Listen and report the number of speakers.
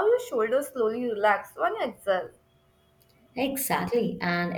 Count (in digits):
2